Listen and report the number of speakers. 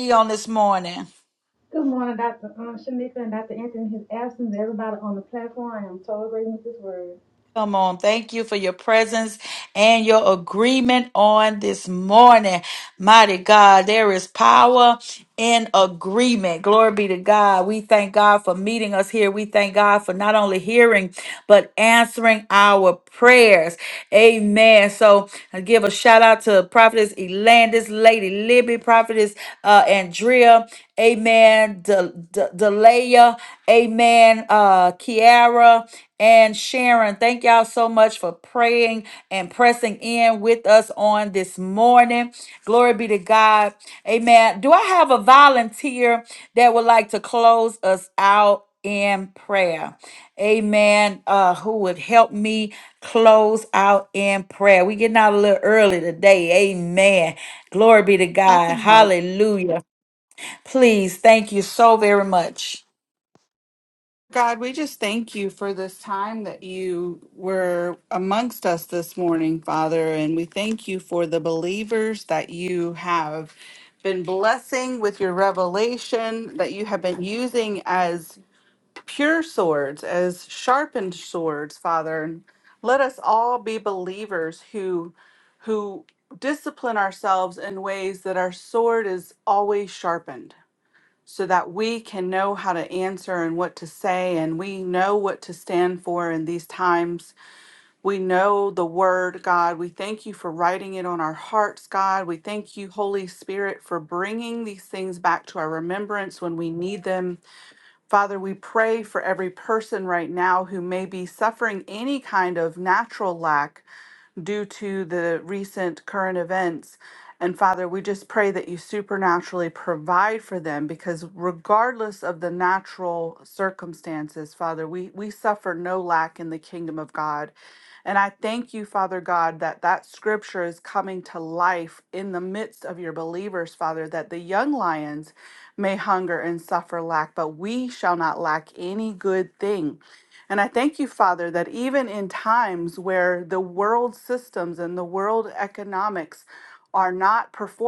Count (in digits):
3